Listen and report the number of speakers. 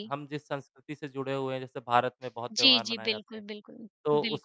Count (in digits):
2